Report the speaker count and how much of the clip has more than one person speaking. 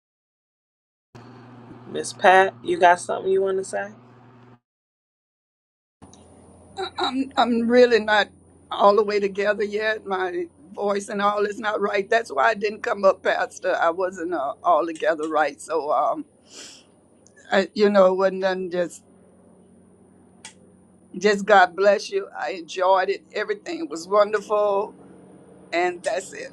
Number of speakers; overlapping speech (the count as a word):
two, no overlap